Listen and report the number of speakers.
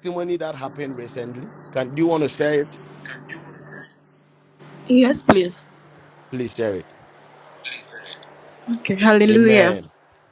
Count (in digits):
2